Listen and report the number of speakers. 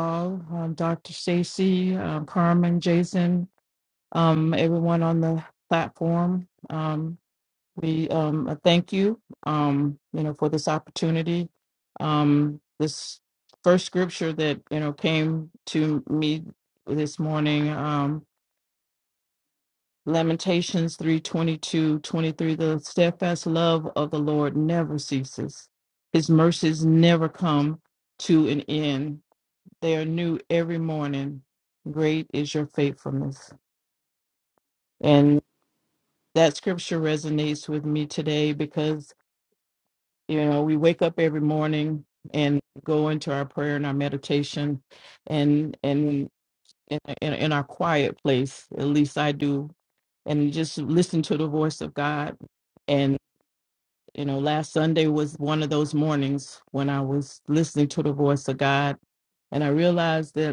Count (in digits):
1